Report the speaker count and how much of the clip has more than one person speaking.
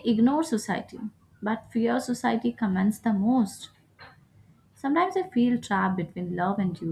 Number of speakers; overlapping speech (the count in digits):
1, no overlap